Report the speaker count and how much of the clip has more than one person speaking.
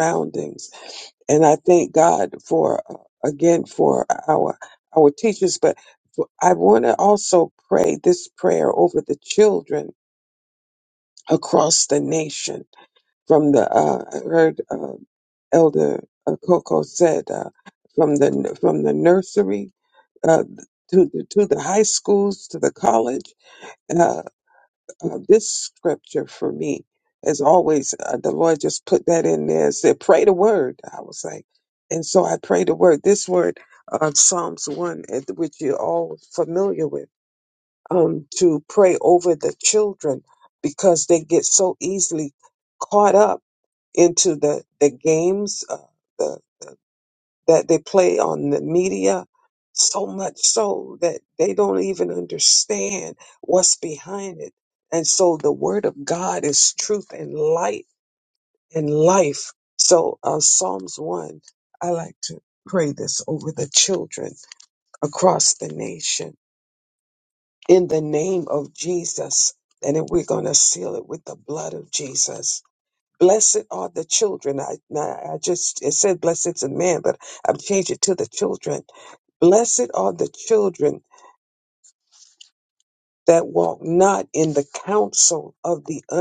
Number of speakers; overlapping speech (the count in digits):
1, no overlap